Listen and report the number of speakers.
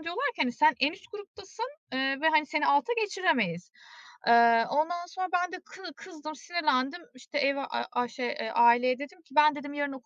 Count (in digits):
1